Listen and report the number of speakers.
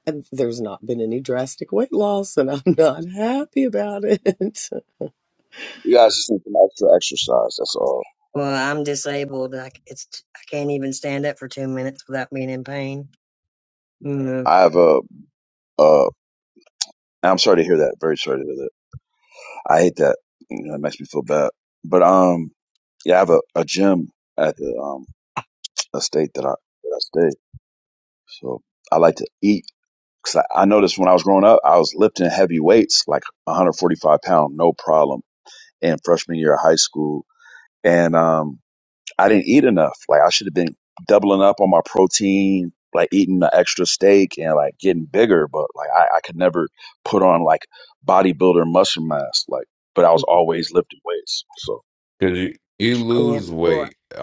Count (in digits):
4